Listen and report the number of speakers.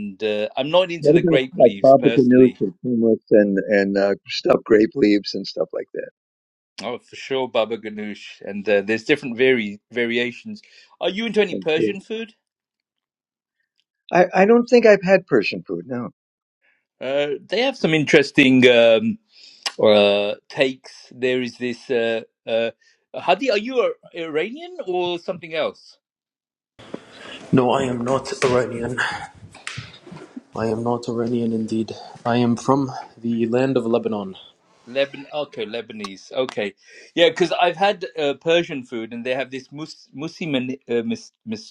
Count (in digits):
3